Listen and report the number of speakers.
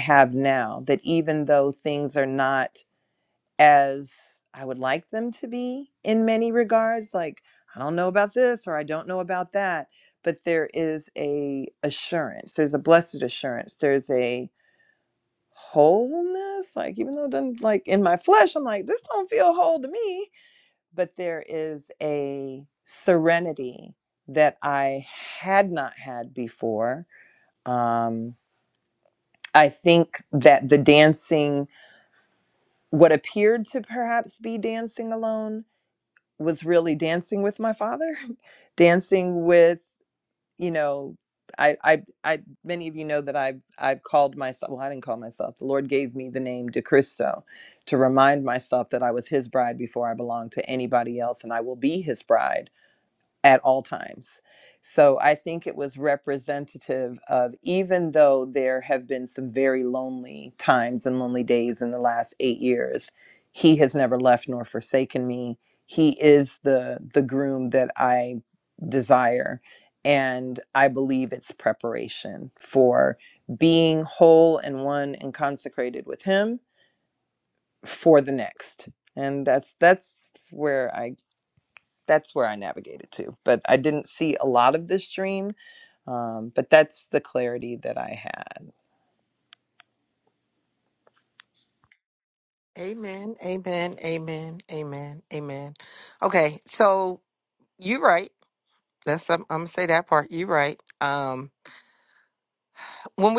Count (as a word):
two